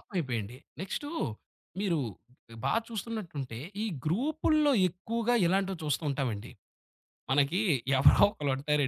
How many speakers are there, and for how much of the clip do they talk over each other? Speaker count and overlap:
1, no overlap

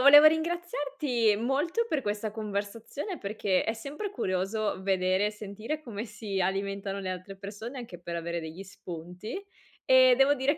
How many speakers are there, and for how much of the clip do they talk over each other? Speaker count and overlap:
1, no overlap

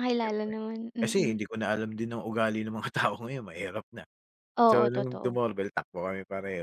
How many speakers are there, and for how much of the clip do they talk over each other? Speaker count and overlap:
2, about 20%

